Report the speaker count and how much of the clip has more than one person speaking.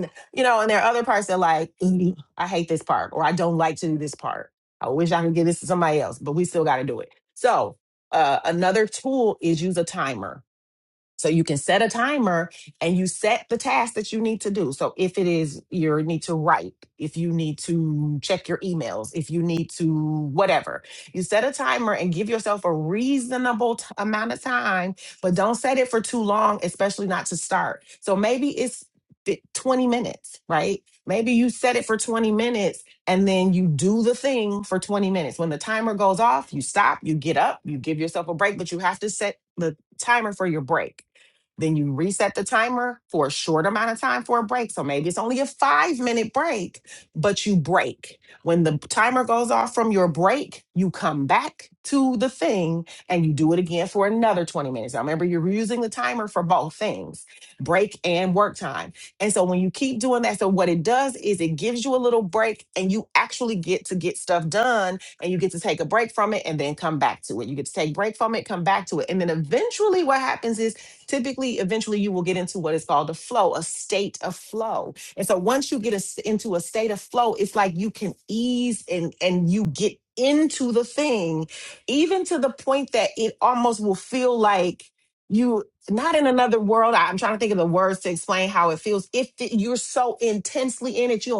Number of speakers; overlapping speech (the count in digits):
1, no overlap